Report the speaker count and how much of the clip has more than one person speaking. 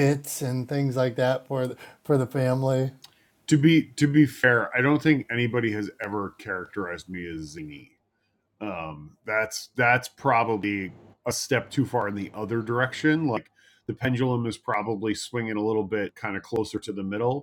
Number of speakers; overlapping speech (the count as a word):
two, no overlap